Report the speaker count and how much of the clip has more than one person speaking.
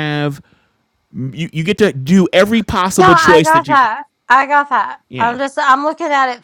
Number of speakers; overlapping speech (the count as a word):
two, about 17%